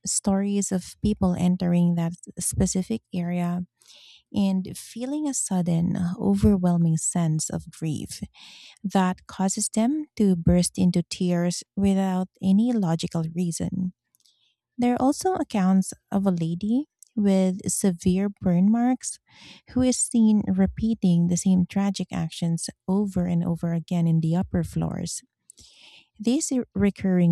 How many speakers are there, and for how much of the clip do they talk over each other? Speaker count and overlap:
1, no overlap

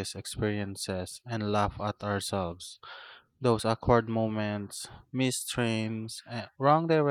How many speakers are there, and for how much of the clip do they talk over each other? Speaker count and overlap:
1, no overlap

